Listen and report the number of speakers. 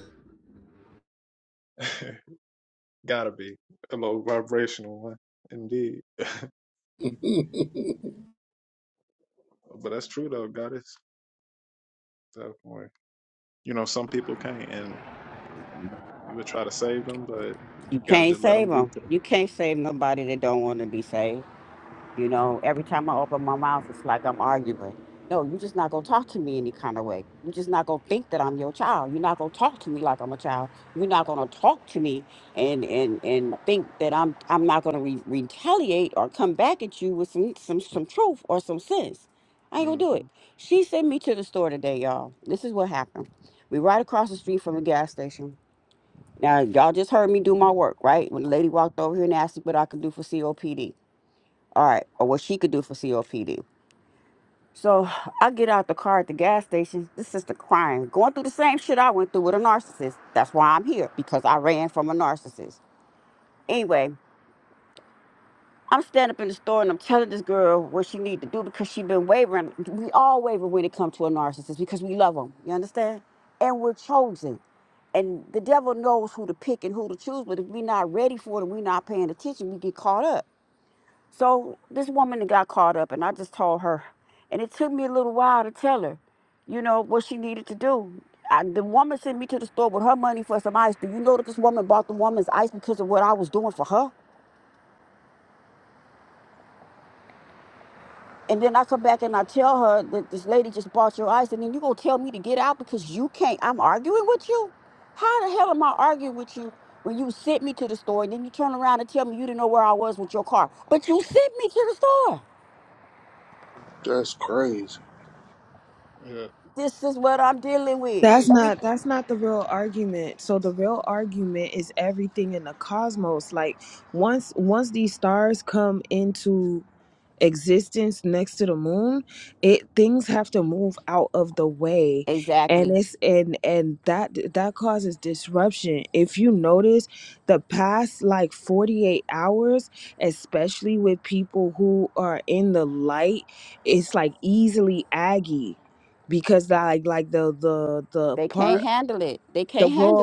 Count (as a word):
four